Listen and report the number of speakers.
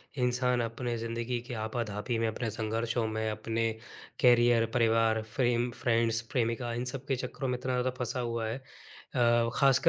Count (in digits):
1